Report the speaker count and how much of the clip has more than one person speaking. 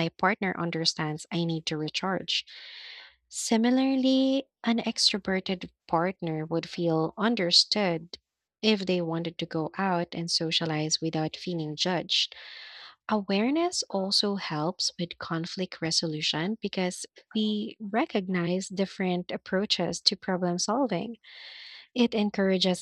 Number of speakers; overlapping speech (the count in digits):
1, no overlap